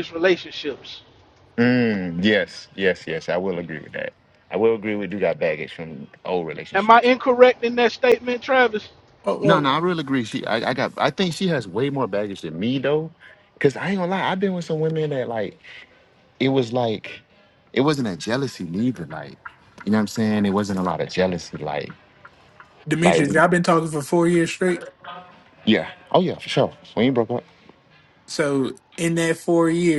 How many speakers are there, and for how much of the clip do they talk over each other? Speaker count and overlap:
three, about 3%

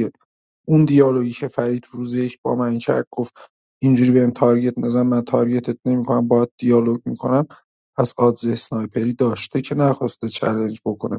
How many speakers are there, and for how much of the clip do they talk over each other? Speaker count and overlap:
one, no overlap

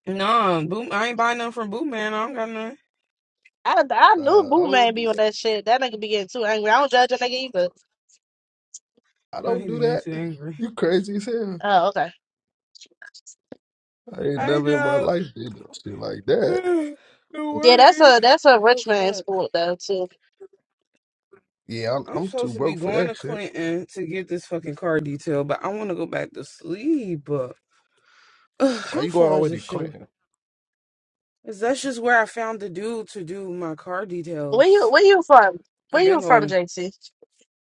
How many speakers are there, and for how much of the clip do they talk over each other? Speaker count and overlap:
three, about 17%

